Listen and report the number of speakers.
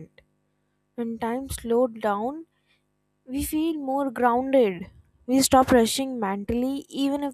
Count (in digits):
1